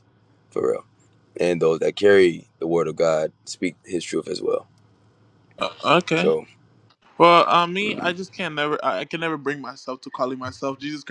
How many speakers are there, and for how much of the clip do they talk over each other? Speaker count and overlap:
2, about 3%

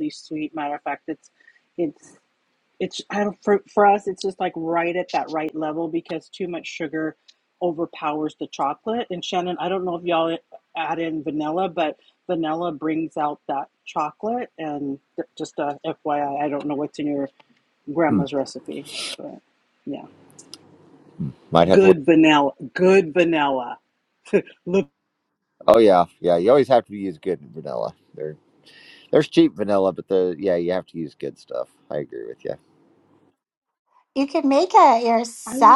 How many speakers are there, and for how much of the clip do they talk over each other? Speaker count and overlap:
3, about 2%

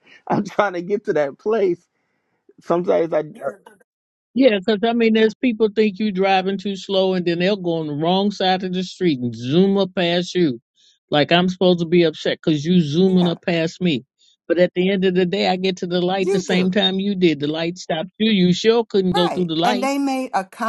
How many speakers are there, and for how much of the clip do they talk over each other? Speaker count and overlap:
3, about 7%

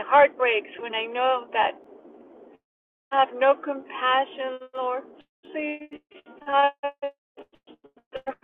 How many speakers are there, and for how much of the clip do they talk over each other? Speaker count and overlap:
1, no overlap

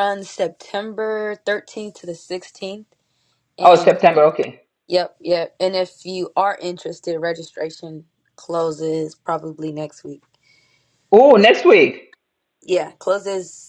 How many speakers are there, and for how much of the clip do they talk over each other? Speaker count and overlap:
2, about 2%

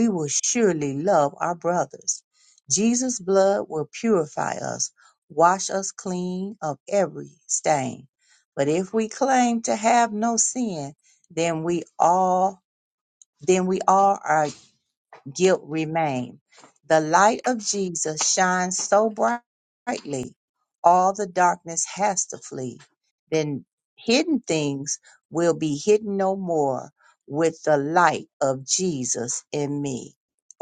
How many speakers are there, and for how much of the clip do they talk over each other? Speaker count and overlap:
1, no overlap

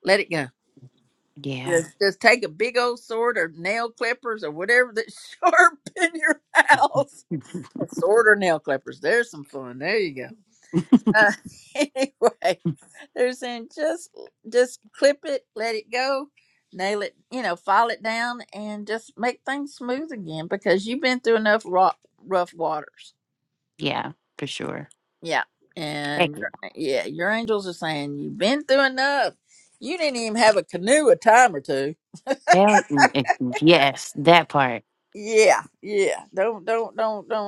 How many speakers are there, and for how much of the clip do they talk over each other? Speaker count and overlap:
2, about 1%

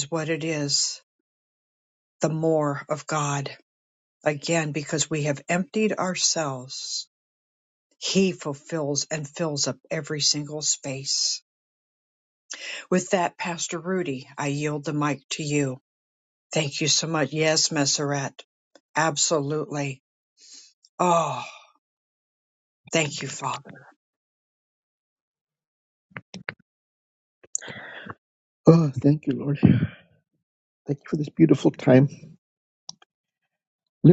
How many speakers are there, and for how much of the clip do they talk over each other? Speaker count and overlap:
2, no overlap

